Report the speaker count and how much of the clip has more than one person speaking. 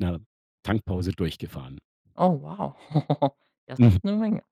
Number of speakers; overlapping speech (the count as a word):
two, about 9%